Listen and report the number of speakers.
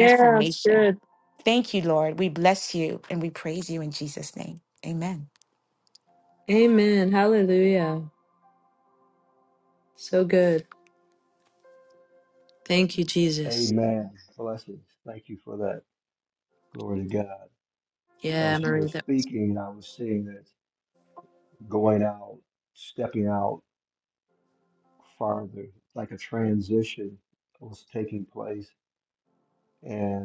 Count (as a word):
three